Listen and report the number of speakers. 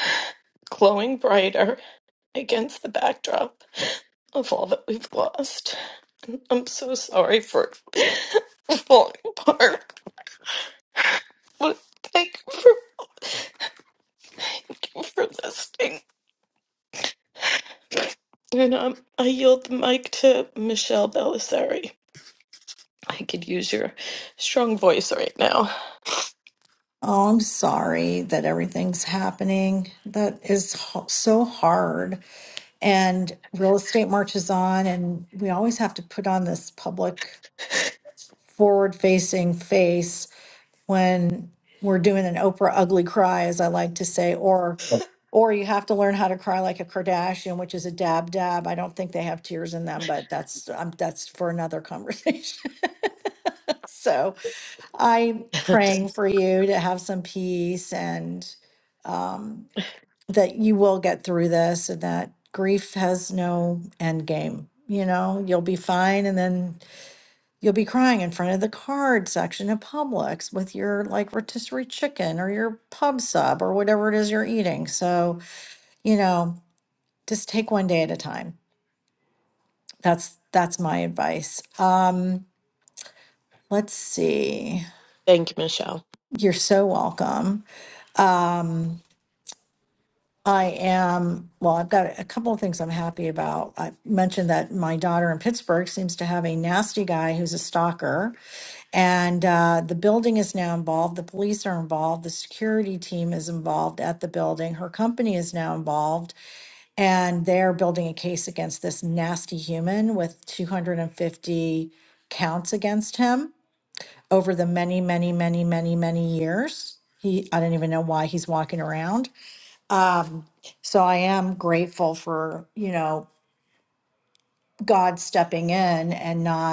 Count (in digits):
2